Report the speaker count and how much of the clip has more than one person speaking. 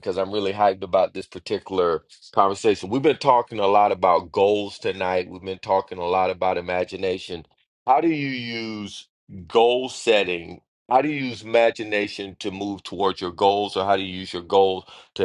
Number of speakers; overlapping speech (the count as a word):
one, no overlap